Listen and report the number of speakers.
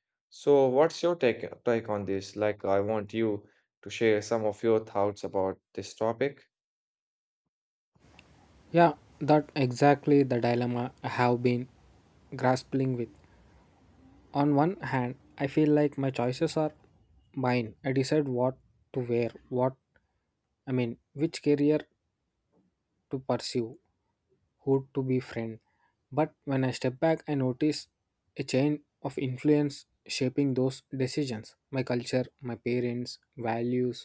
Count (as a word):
two